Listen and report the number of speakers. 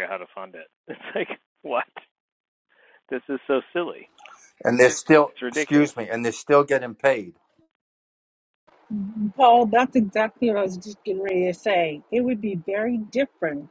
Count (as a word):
three